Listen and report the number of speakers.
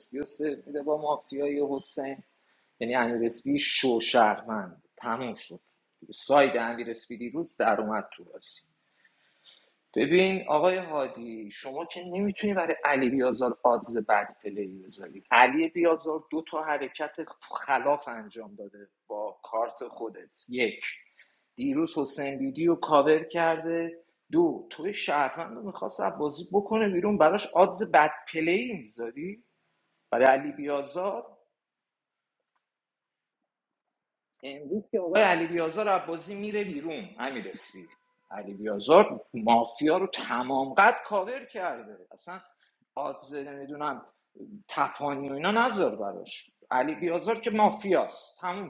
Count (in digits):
1